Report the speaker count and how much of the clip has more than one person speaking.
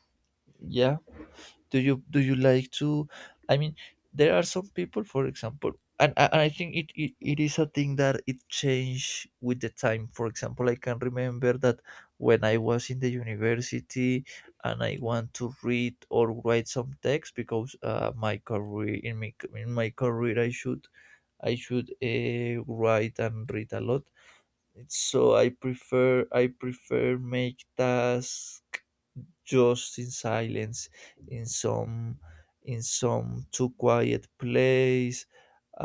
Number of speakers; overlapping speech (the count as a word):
one, no overlap